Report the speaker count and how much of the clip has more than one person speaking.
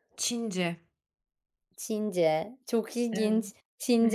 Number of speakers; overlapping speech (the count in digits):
2, about 11%